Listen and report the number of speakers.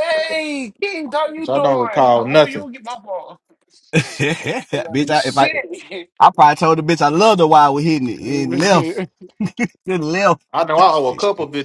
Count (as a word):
three